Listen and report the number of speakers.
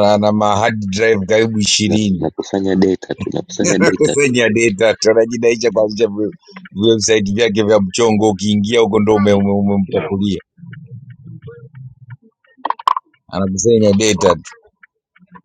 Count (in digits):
2